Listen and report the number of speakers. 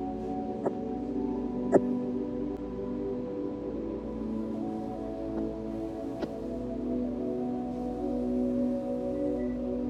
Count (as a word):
zero